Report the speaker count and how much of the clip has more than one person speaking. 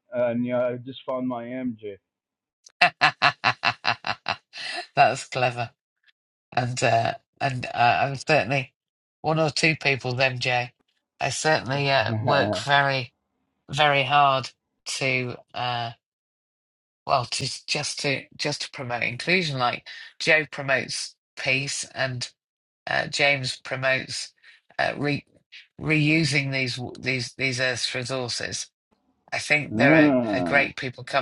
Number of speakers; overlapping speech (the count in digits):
2, about 3%